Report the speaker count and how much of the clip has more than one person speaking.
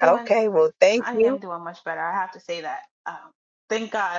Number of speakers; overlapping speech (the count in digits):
2, about 16%